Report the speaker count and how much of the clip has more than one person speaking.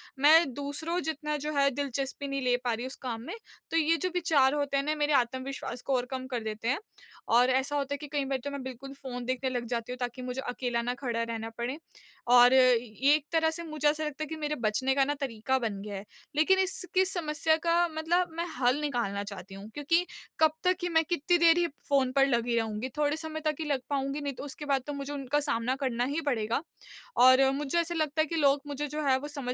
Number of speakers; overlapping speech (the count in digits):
1, no overlap